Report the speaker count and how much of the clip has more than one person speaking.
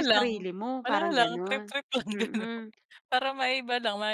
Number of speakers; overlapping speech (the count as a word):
two, about 37%